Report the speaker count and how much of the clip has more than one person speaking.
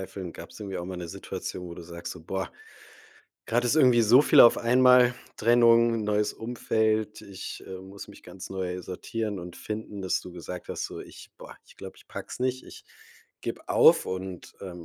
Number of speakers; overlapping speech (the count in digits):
1, no overlap